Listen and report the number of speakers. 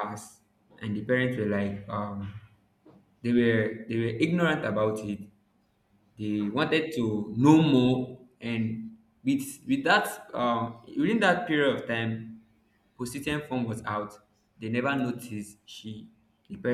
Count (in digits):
1